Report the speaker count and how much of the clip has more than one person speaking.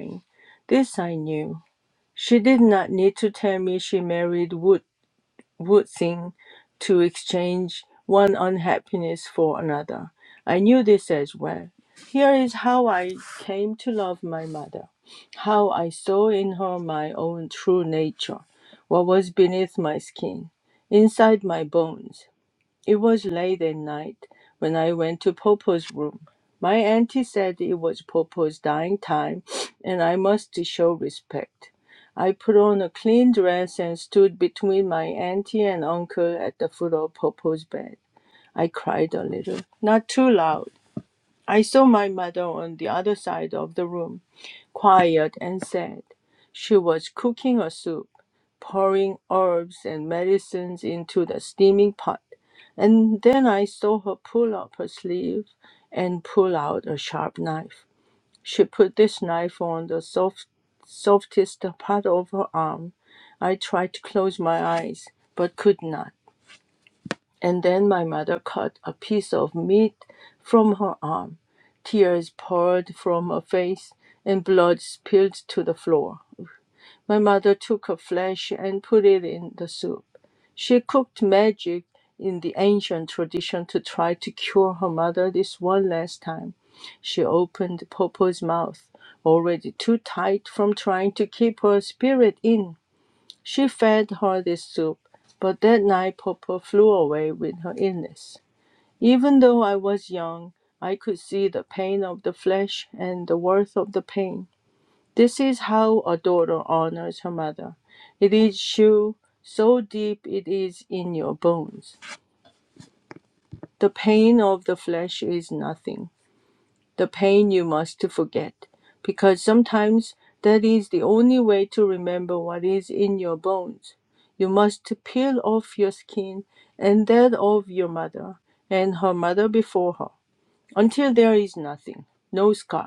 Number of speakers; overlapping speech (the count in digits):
1, no overlap